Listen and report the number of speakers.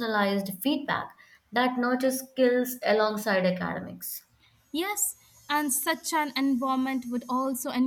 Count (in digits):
2